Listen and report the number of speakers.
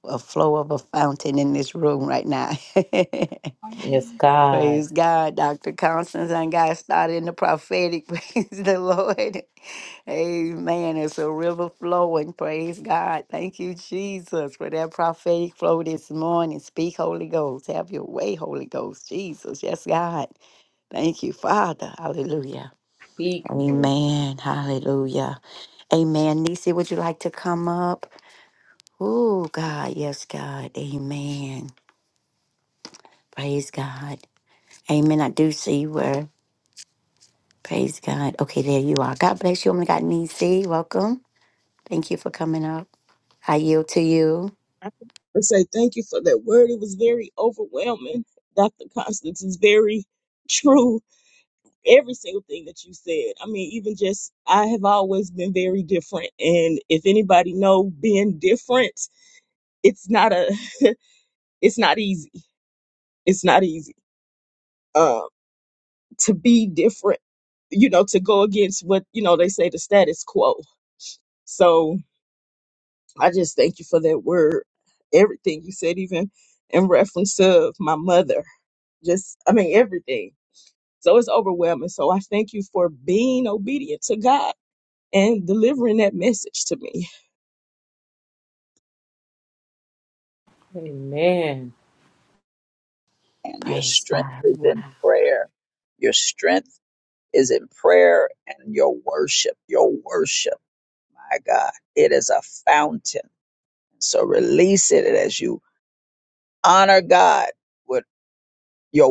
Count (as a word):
four